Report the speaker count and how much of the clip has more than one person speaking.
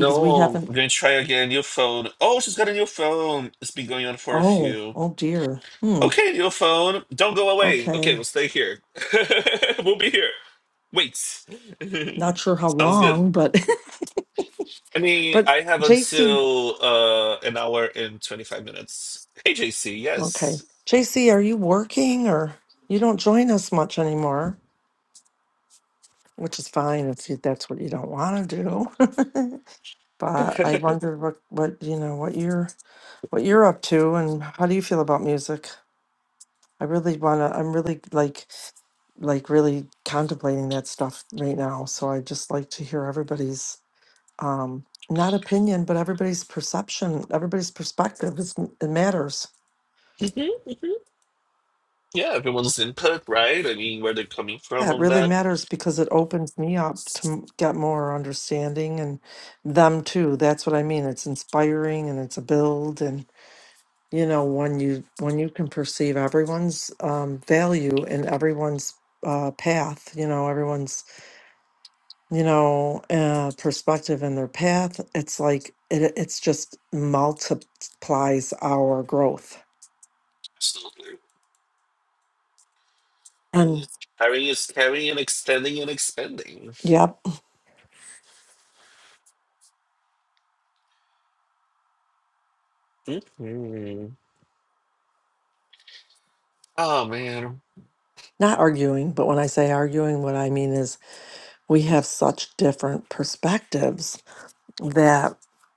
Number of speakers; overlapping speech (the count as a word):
two, about 4%